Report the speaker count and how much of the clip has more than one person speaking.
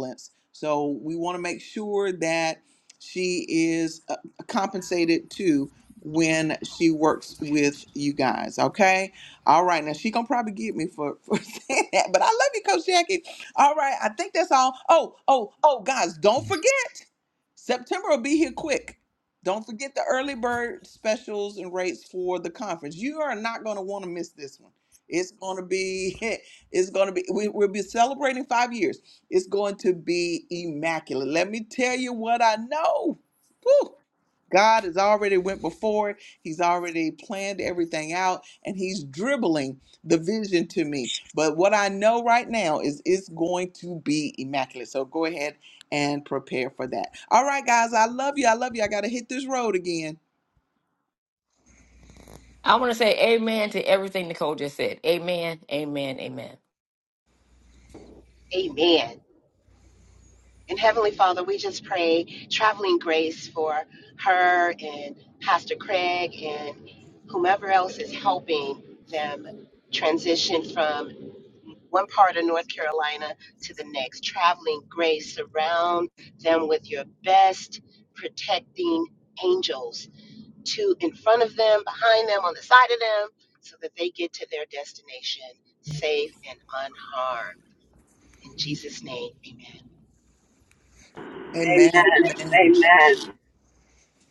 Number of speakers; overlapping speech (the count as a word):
four, about 1%